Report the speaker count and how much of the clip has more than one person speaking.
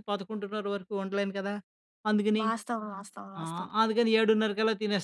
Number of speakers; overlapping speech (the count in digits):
2, about 10%